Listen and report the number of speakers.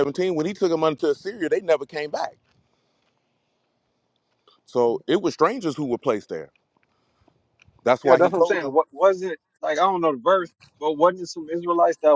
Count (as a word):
two